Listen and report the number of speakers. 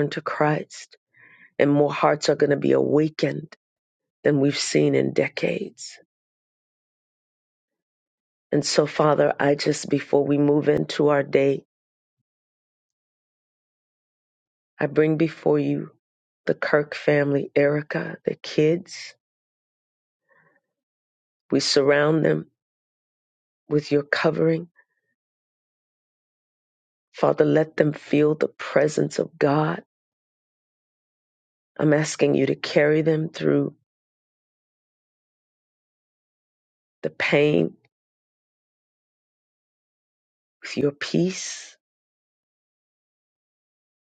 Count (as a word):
one